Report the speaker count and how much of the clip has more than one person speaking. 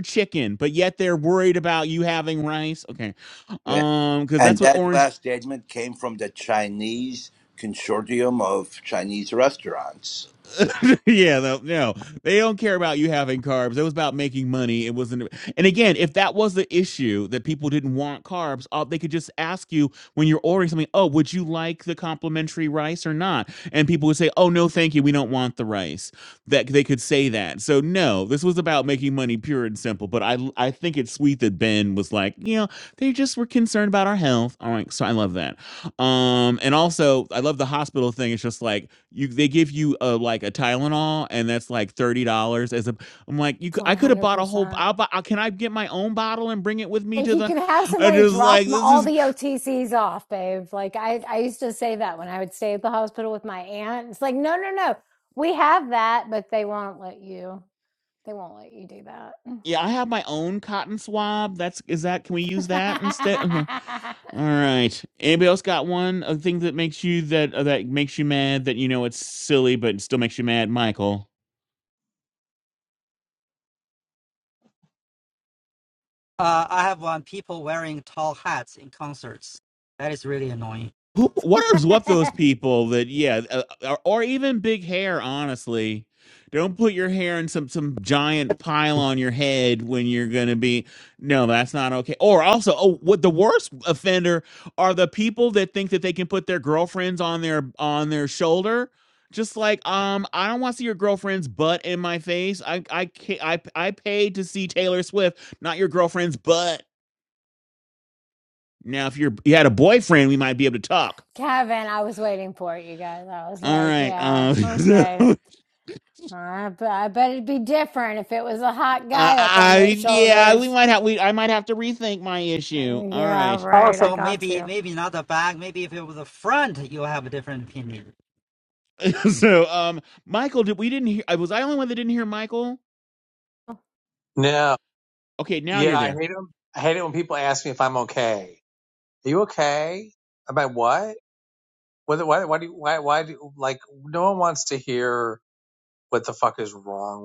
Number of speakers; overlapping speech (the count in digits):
5, about 6%